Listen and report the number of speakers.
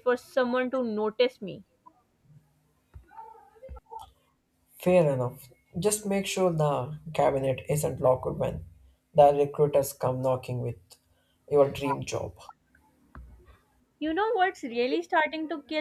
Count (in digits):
2